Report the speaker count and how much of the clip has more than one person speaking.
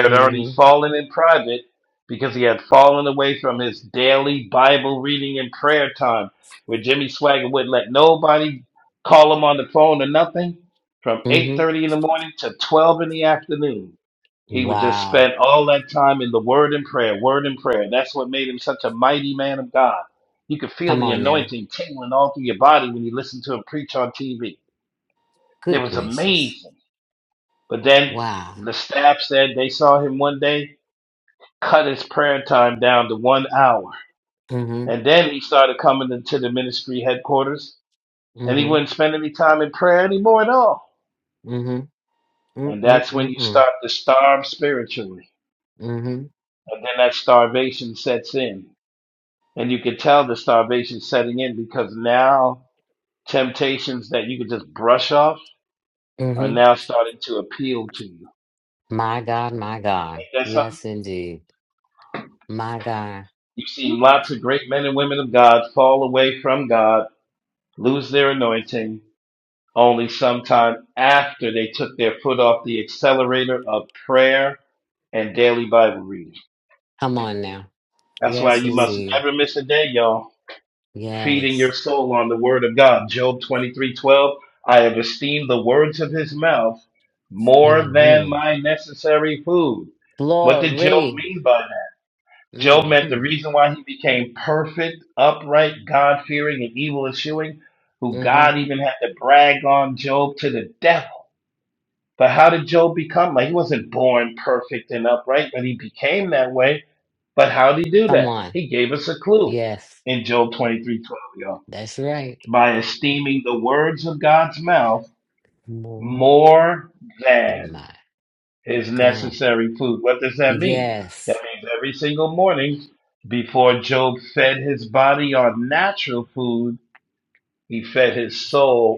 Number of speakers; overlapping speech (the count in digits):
2, about 8%